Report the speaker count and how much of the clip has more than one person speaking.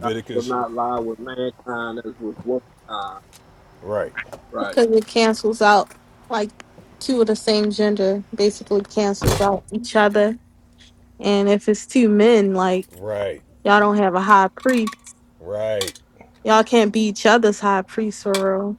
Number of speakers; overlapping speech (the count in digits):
3, about 4%